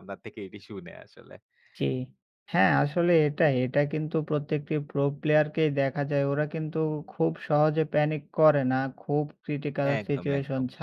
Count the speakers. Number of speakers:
2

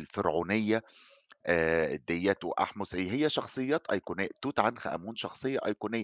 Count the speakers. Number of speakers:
1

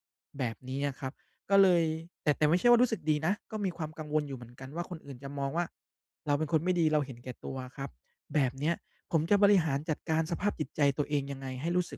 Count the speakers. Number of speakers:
1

